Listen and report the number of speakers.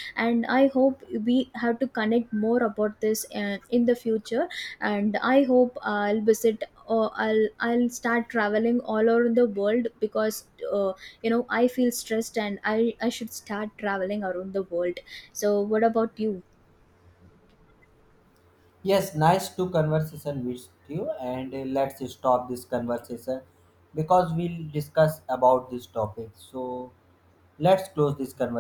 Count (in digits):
2